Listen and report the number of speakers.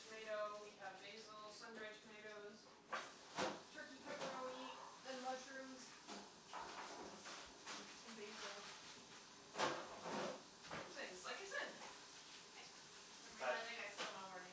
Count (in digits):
2